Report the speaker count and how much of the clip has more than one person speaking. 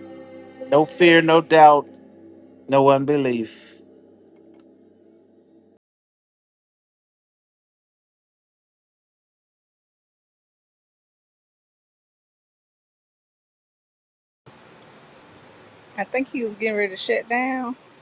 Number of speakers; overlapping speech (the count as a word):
two, no overlap